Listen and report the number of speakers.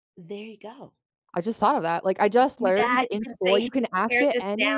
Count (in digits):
2